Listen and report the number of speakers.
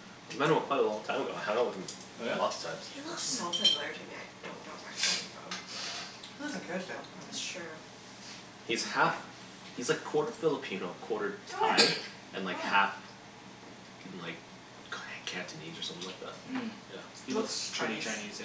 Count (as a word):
four